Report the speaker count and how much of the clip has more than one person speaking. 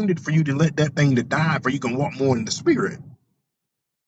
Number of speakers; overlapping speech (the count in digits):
1, no overlap